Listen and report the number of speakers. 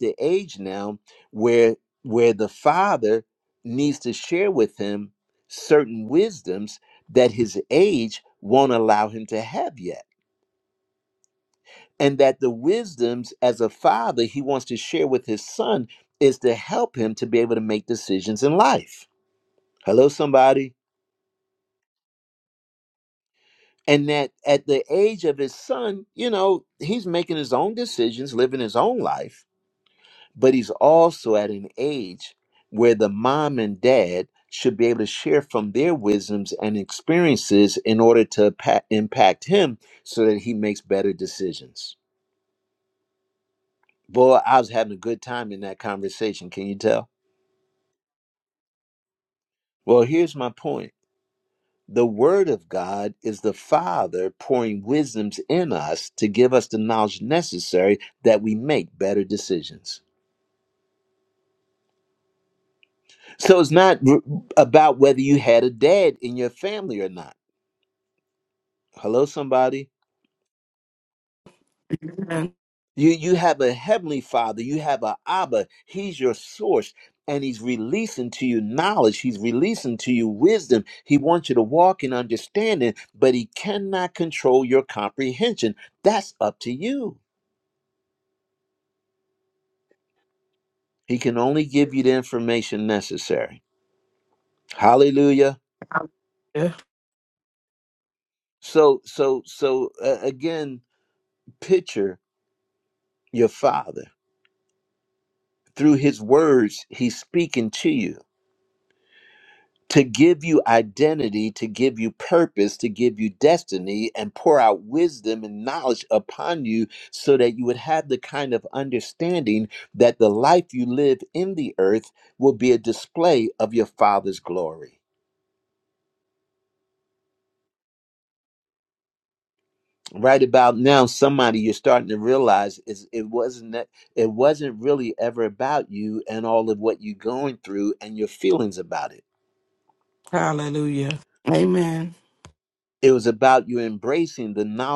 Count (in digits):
2